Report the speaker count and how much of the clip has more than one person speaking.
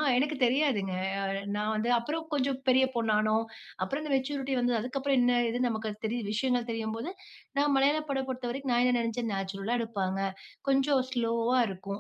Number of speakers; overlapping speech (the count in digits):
1, no overlap